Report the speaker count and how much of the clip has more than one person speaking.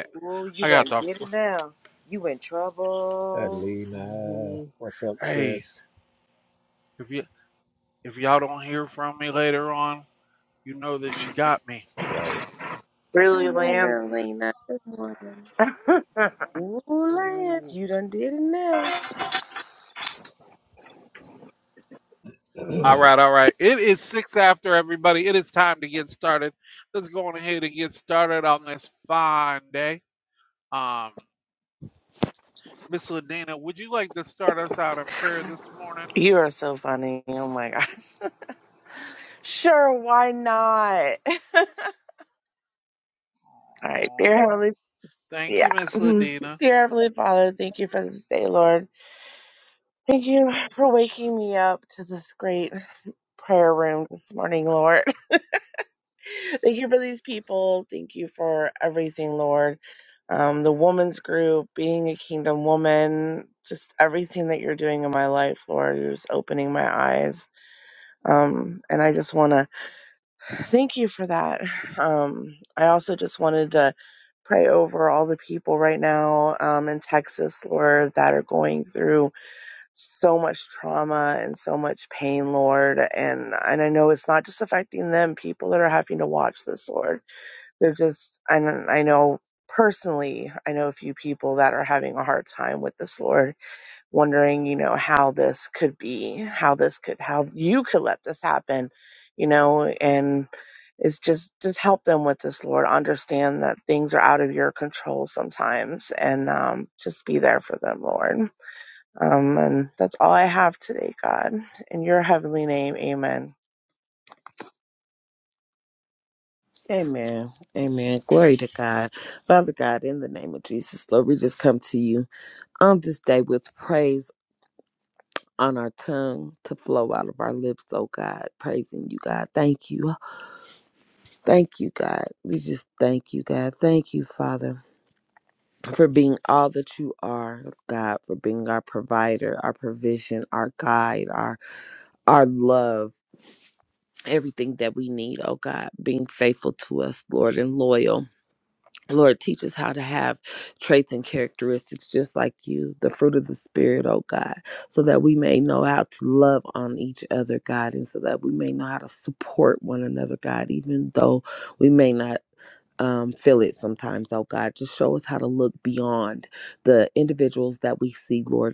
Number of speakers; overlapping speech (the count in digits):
5, about 2%